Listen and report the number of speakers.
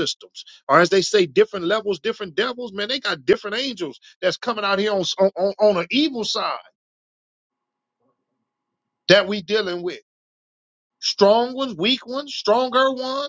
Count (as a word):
one